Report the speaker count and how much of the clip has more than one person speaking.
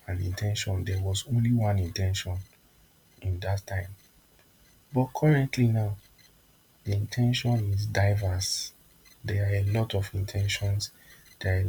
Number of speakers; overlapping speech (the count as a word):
one, no overlap